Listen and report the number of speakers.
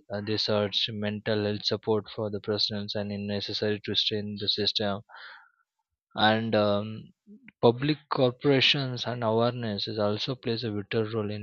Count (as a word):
one